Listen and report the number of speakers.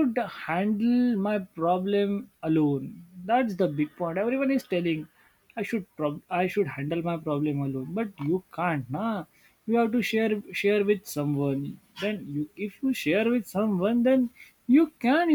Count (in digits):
1